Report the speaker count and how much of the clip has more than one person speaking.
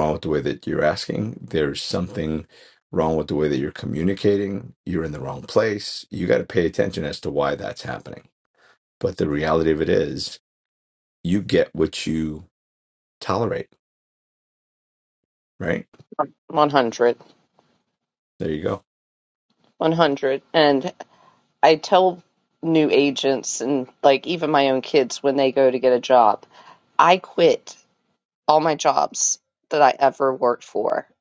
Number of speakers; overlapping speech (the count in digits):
2, no overlap